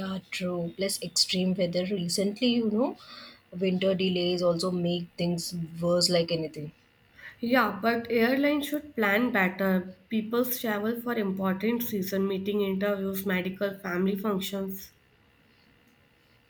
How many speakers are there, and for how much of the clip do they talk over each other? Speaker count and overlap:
two, no overlap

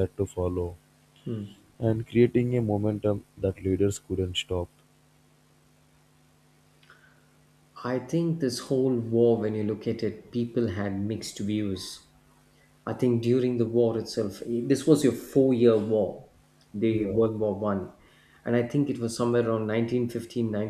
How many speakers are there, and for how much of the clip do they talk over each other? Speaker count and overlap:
two, about 2%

